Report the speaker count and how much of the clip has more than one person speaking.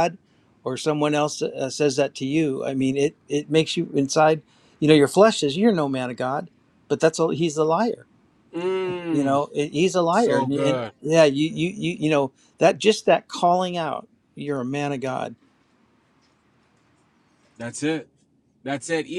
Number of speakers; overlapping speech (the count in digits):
2, about 5%